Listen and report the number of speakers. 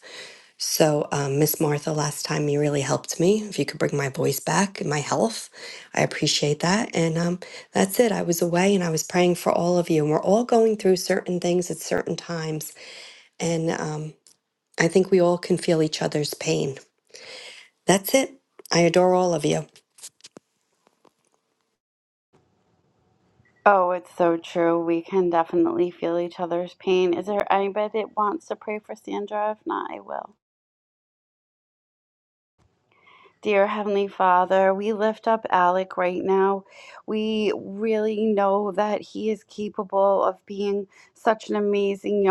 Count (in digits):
2